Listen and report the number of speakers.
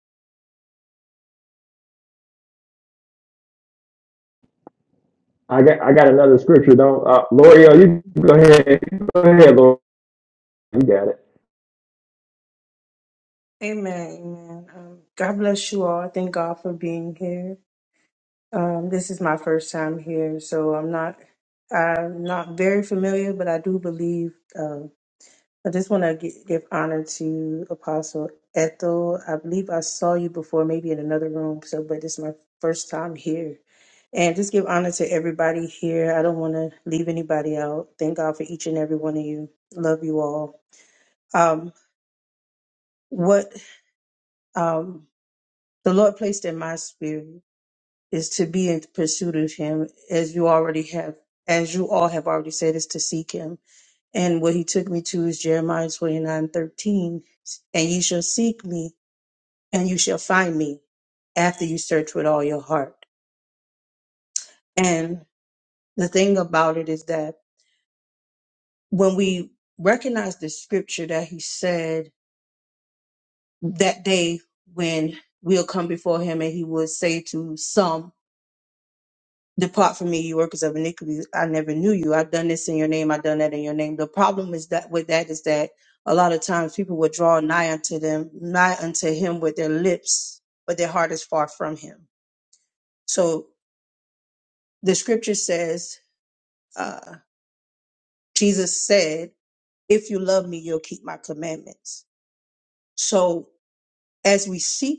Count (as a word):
two